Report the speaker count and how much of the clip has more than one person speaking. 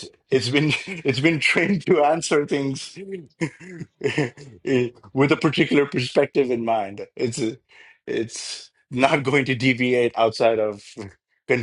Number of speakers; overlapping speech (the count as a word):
one, no overlap